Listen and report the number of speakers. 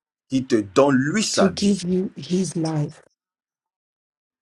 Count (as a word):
two